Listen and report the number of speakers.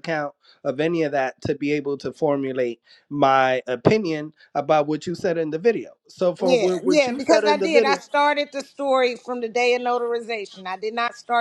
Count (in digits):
2